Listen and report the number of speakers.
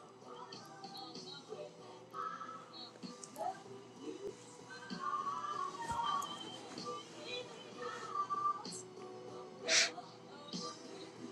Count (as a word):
zero